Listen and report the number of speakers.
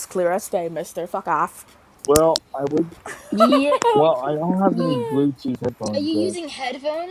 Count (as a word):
three